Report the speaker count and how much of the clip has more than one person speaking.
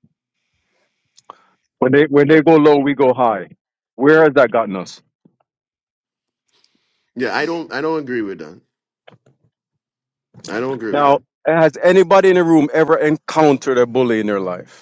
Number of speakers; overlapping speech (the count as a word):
two, about 2%